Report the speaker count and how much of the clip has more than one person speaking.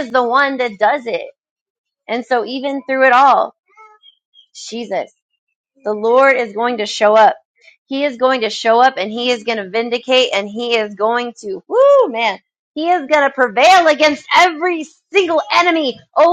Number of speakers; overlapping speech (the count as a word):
one, no overlap